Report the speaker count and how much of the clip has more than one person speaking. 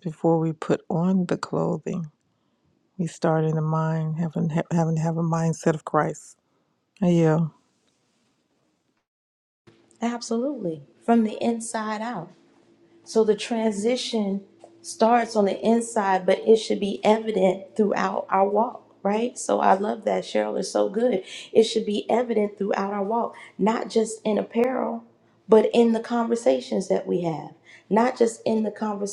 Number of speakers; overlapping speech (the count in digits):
2, no overlap